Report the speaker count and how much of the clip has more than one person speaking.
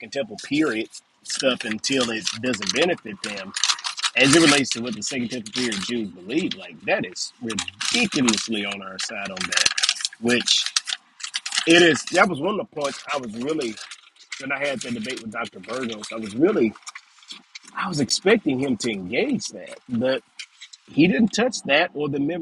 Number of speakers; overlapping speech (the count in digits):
1, no overlap